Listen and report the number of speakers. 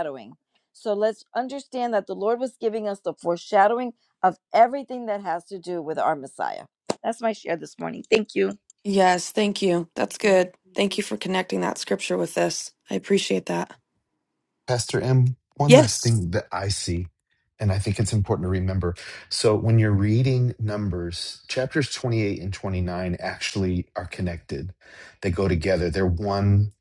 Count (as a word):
three